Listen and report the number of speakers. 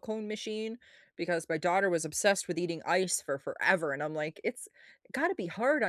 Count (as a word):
one